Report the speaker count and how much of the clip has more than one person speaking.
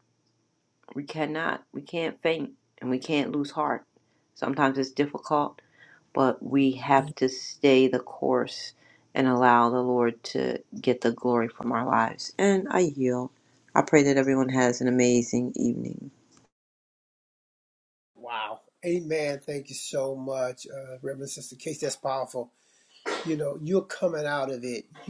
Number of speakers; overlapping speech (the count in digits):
2, no overlap